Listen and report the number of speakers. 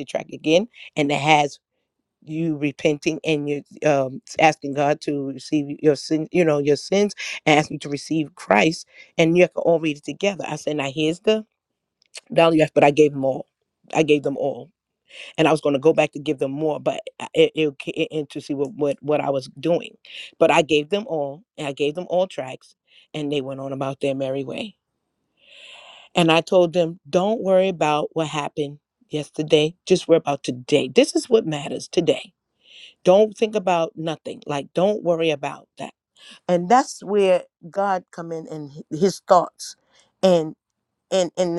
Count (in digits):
1